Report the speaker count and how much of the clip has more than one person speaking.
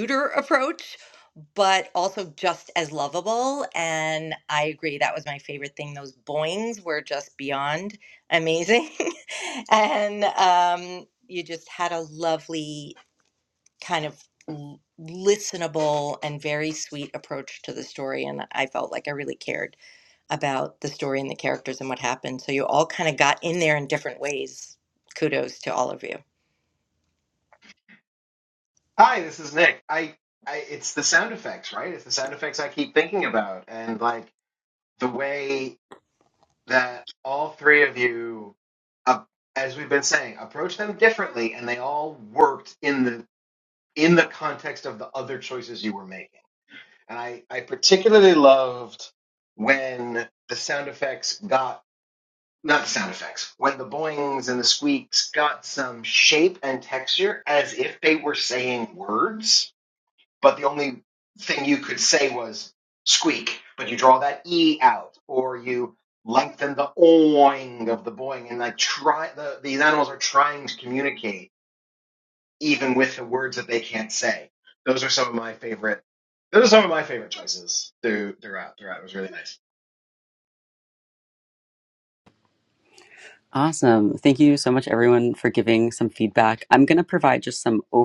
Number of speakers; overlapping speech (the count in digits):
3, no overlap